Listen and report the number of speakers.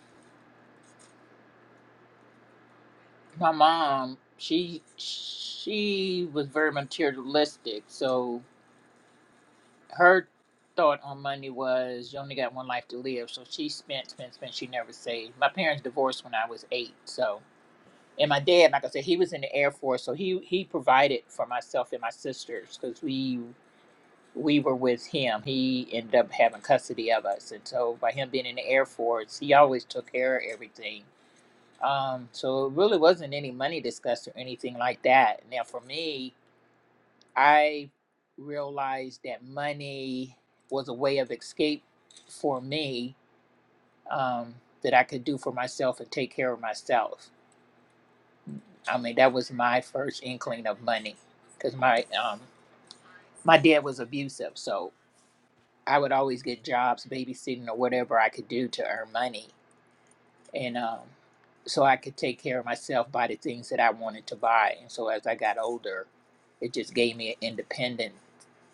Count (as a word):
one